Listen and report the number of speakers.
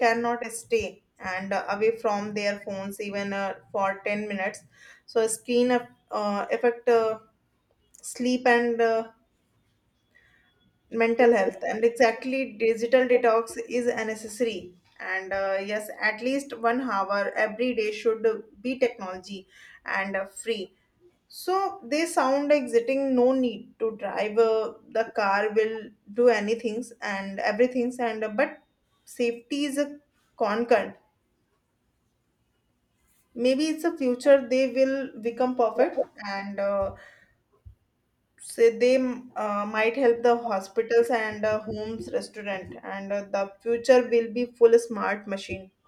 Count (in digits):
1